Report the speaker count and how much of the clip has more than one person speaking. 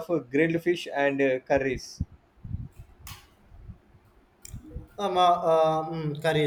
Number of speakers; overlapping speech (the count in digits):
2, no overlap